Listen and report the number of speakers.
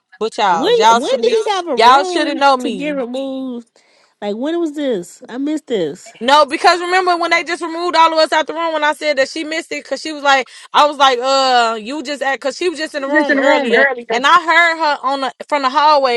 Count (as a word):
two